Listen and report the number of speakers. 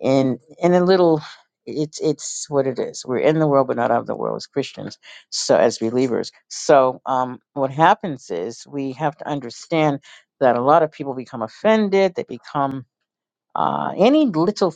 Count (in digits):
1